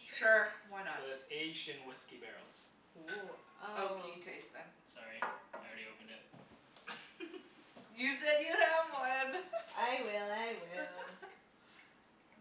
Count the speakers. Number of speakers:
three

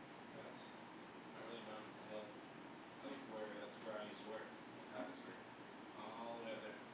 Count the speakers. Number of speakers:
one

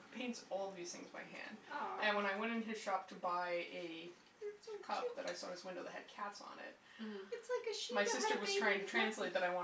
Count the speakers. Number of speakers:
three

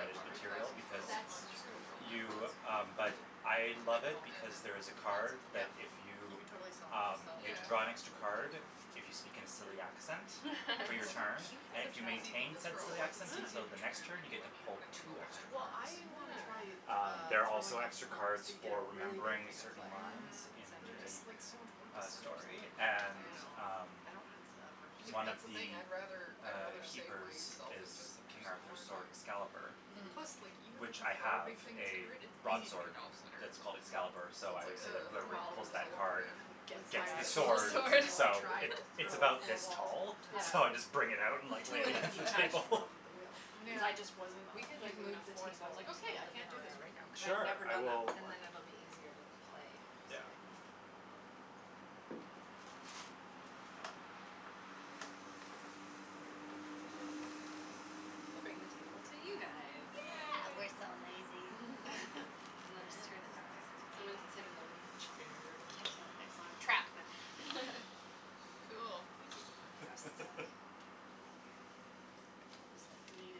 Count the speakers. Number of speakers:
four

